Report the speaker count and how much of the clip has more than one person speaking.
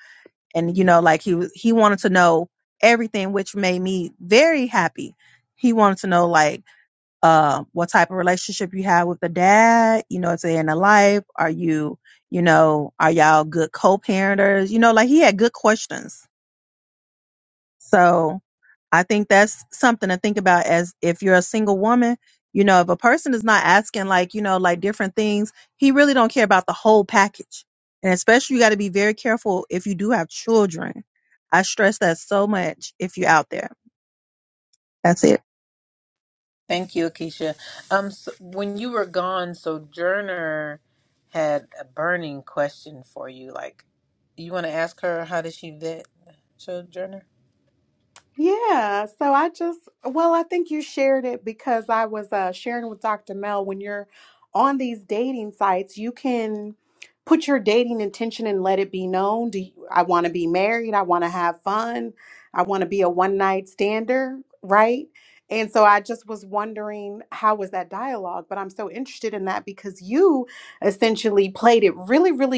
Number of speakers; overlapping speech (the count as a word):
three, no overlap